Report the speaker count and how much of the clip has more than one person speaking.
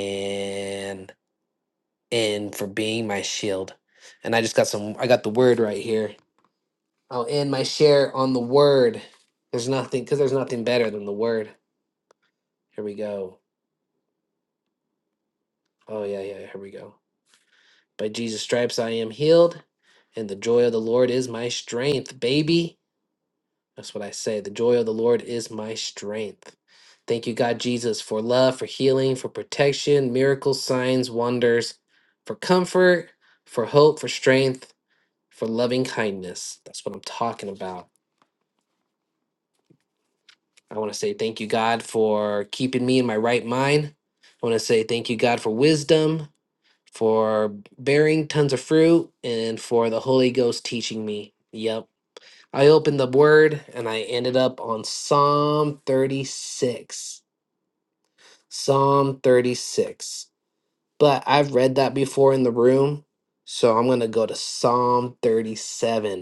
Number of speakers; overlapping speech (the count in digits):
1, no overlap